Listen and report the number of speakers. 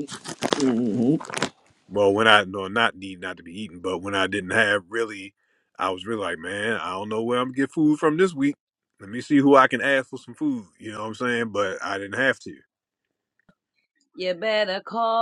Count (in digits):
3